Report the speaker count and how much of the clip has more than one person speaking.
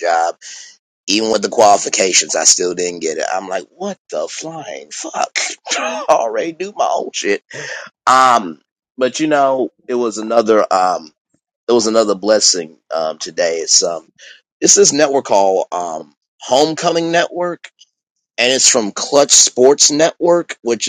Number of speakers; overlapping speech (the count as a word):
one, no overlap